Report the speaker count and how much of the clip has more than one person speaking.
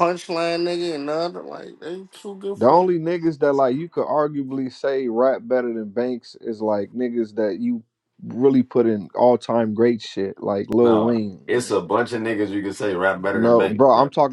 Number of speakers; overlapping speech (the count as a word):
three, about 13%